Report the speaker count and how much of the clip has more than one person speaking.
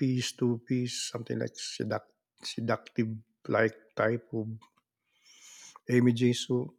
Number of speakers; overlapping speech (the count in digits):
1, no overlap